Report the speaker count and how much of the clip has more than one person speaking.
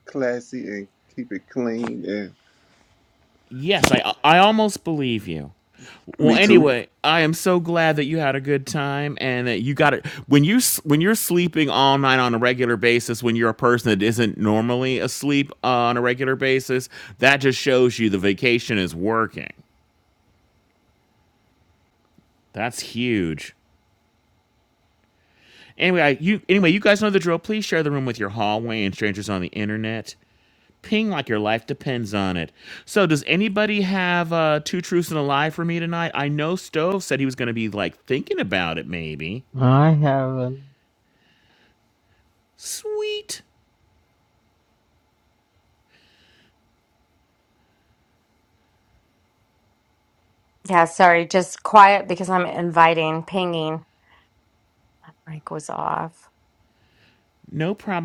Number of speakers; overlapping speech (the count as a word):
four, about 1%